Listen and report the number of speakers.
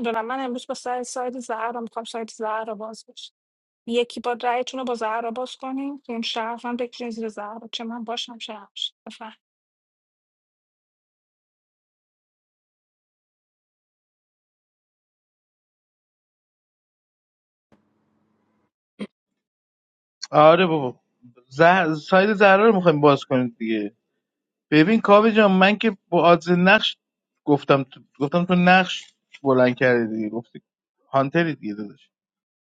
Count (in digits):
2